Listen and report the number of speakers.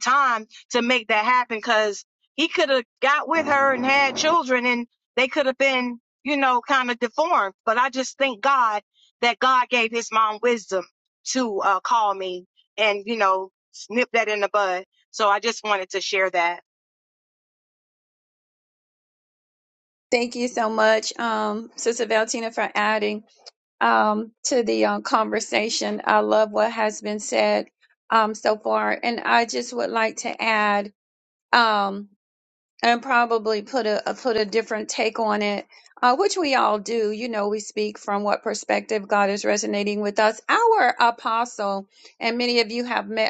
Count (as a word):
two